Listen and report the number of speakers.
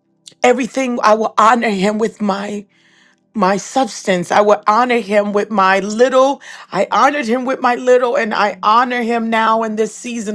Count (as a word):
one